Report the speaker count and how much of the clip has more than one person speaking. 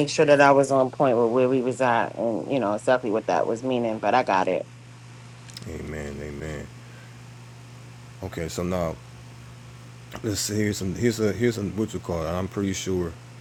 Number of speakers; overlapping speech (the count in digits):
2, no overlap